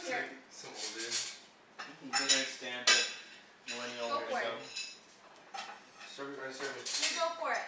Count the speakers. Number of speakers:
three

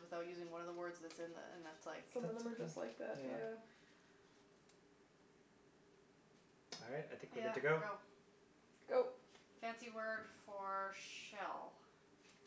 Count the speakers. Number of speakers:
three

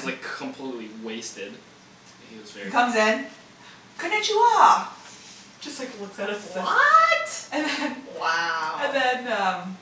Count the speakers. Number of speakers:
three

